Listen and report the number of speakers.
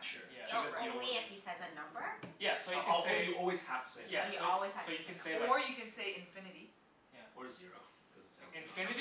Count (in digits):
4